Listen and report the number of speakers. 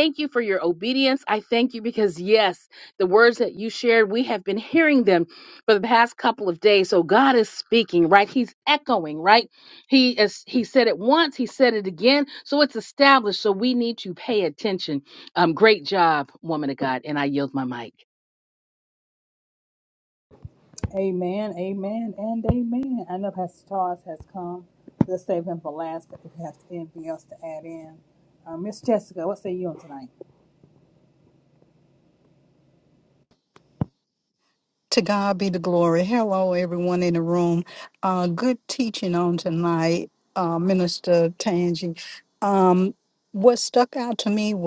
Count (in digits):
3